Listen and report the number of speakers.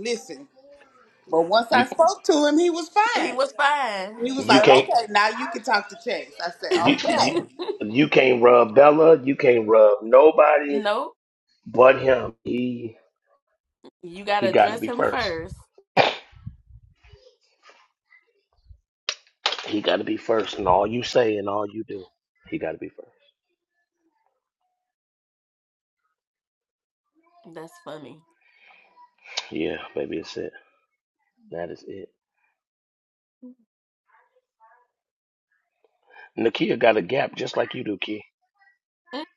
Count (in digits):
3